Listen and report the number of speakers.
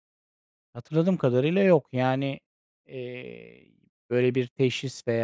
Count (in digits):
1